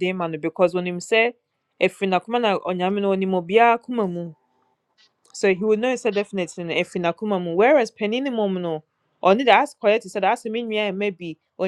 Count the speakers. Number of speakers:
1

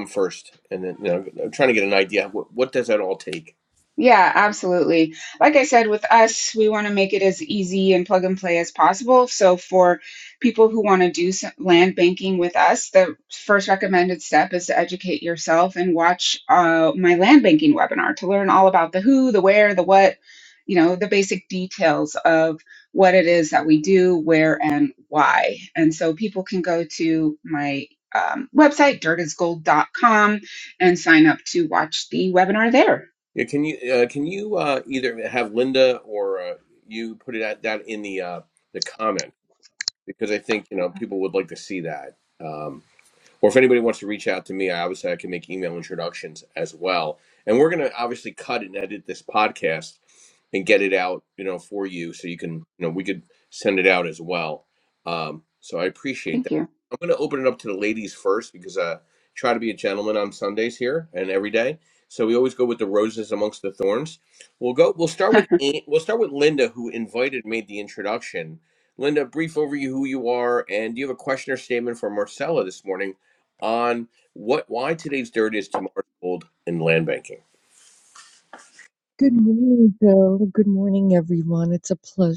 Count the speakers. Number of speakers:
3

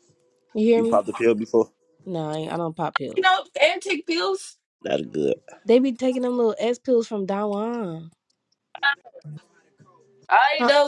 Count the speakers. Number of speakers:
3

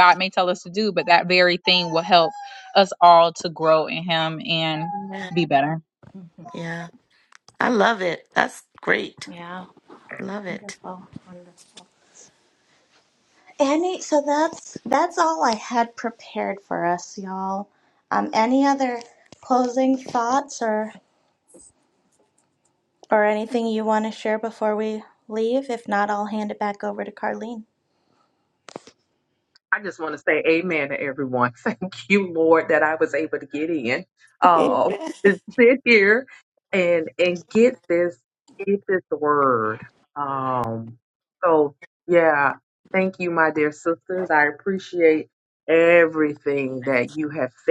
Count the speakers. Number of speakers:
4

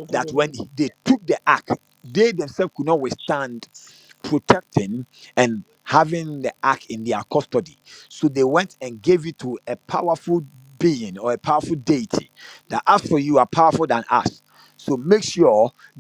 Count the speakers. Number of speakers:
1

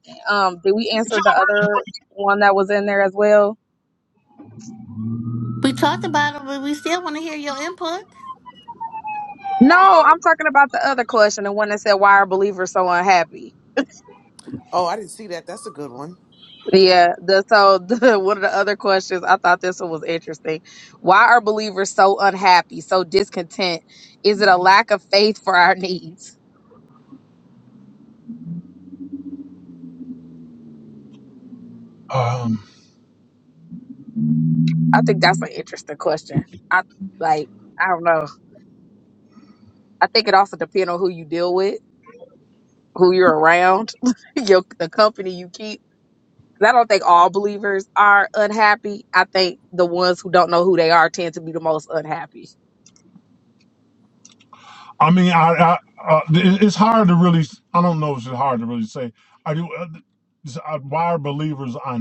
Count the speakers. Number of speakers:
4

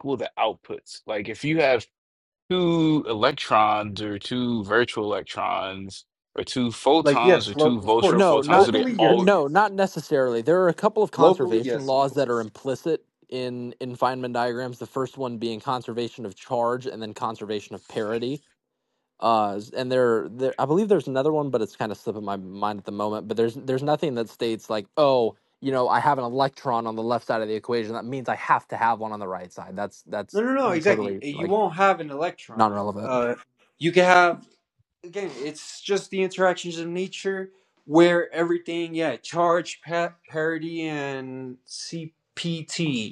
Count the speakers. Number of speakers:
3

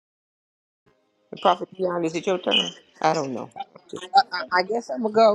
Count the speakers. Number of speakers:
2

